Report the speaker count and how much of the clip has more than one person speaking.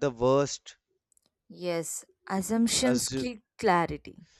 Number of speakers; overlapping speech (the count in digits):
2, about 10%